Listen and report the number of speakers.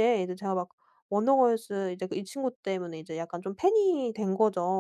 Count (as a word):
one